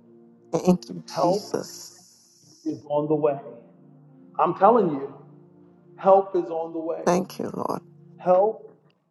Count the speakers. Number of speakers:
2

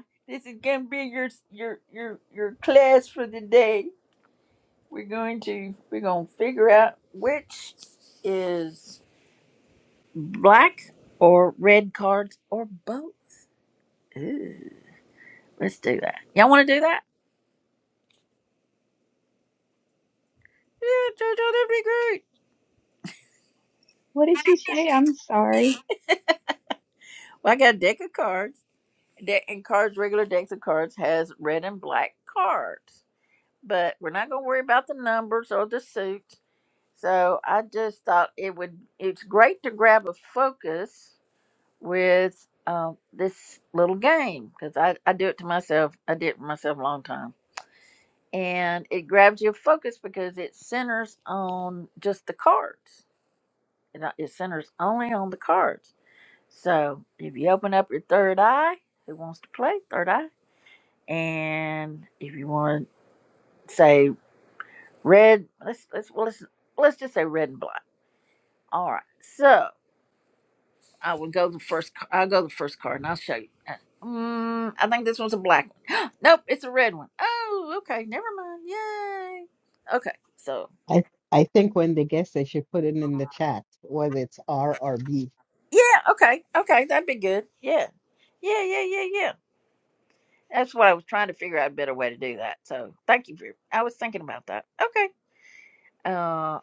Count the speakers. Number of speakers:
3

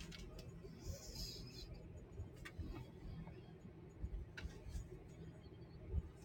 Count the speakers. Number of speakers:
0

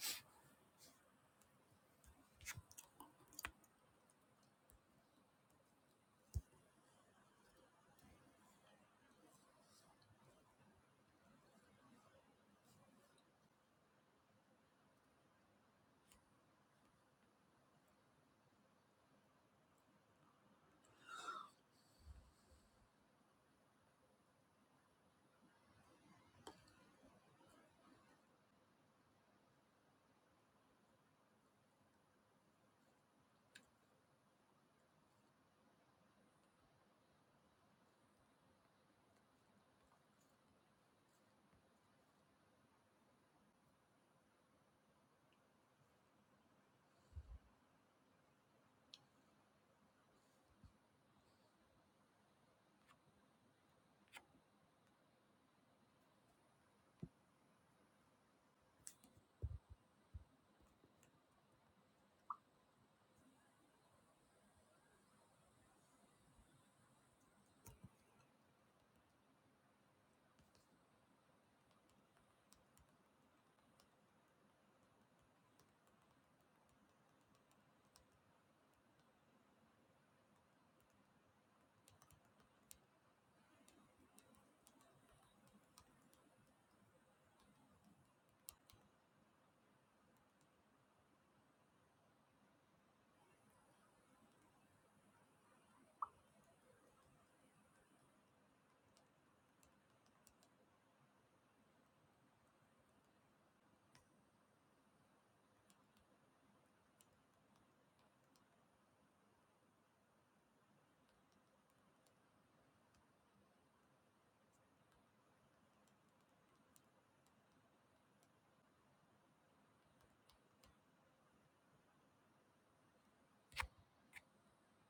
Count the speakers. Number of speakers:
0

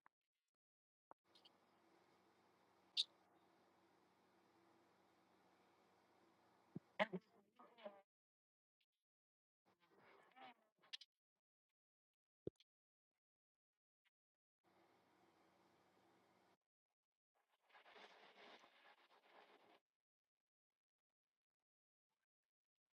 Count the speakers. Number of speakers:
0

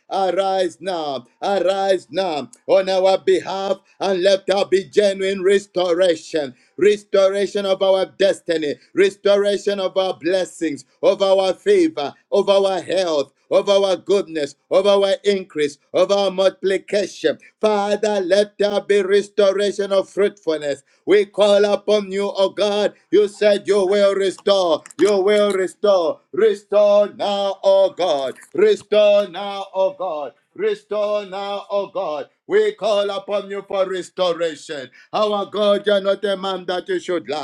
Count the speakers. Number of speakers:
1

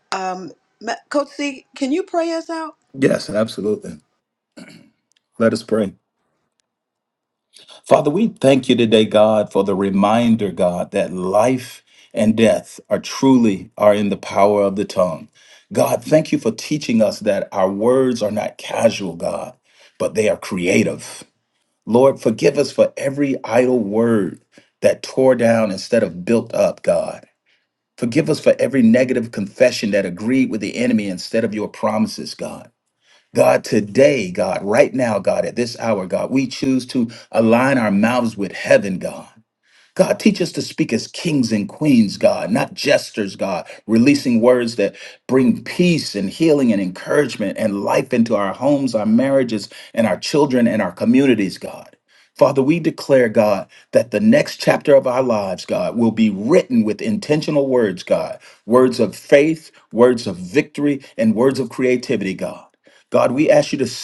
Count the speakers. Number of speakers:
2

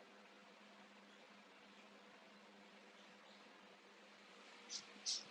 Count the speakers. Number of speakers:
0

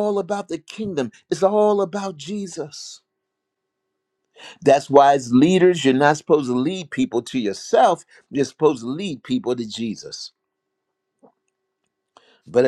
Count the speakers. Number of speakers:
1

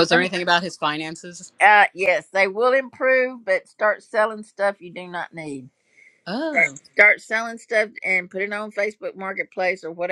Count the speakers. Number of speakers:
2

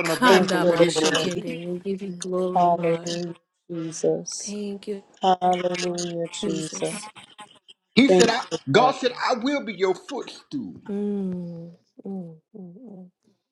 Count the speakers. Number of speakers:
3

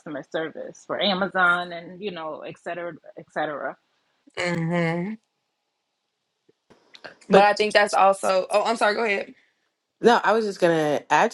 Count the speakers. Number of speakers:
3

